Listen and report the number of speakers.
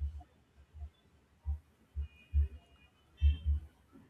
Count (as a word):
zero